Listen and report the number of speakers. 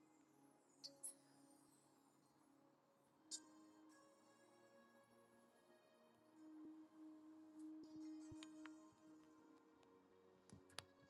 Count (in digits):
0